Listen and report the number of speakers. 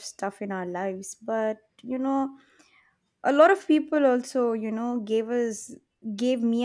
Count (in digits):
1